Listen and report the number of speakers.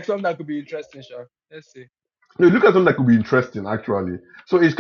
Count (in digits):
2